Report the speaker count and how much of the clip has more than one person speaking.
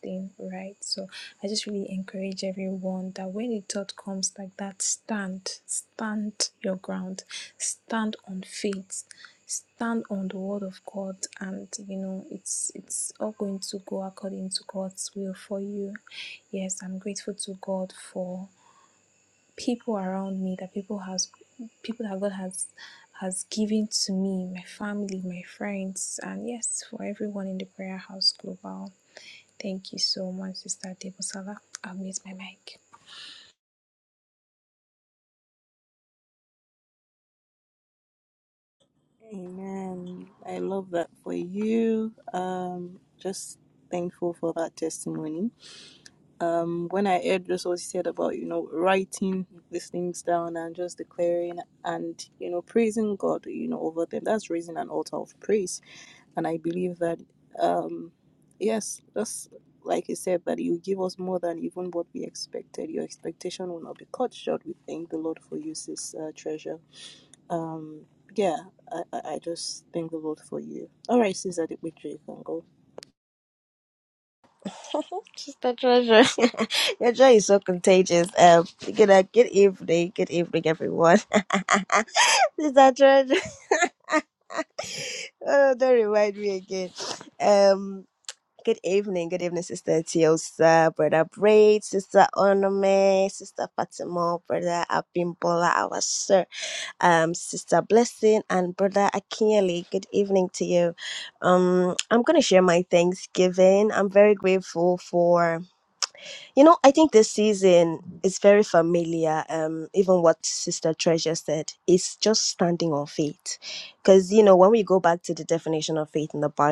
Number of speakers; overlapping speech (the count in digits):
3, no overlap